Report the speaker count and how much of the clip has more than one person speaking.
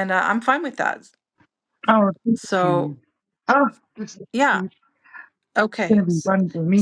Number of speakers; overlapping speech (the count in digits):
2, about 10%